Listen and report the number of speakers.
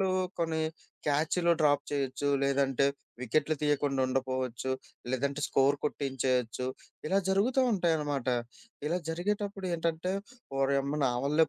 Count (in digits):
1